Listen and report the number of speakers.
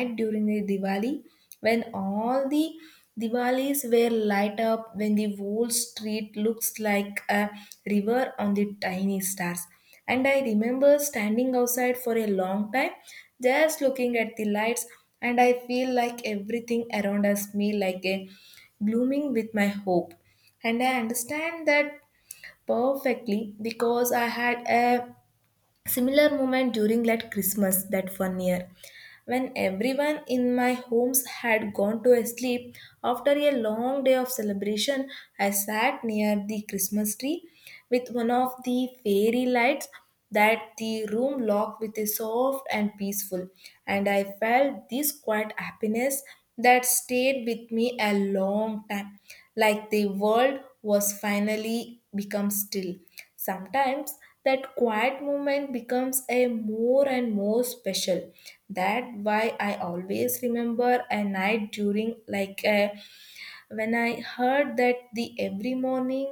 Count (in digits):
1